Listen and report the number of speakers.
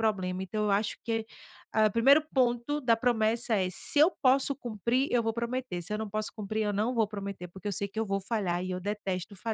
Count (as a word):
one